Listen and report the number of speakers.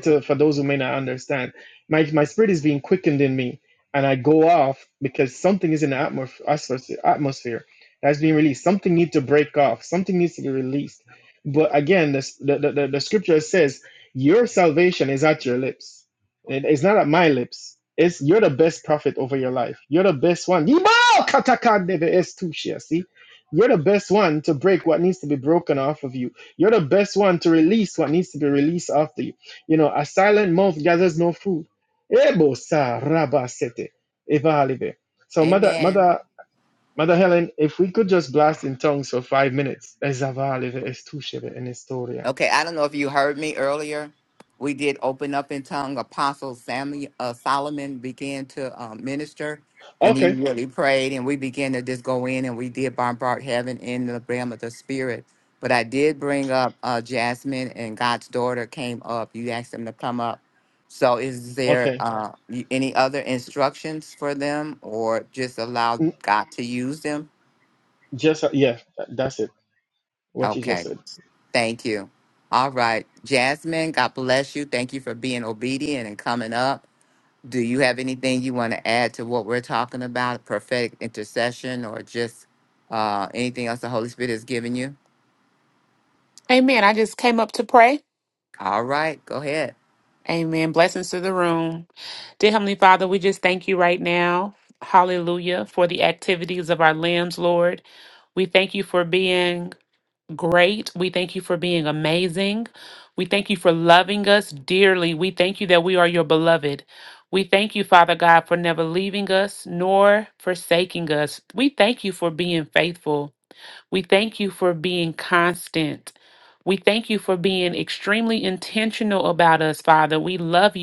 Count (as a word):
three